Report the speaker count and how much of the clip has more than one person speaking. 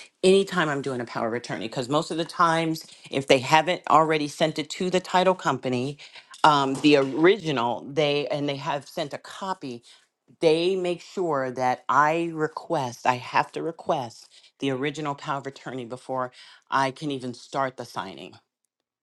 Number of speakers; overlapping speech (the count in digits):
1, no overlap